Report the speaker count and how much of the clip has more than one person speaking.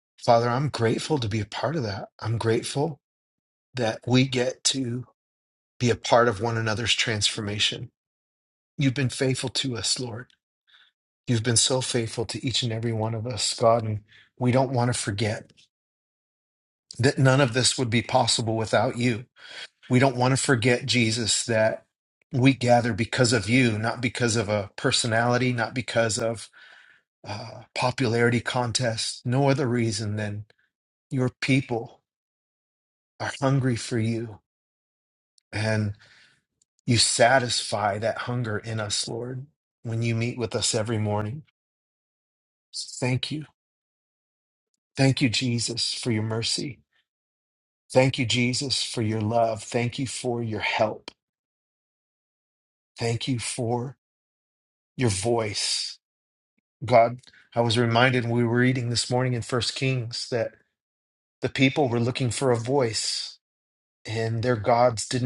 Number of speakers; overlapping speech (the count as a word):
one, no overlap